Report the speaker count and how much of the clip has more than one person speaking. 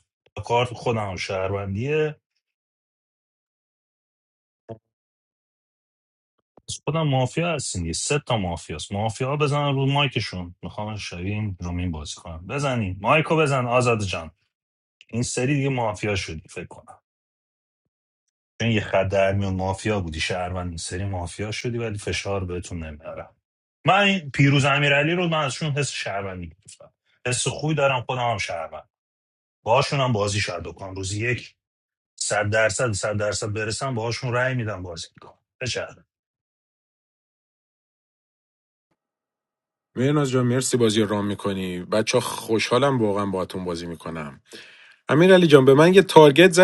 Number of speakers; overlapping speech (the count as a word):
two, no overlap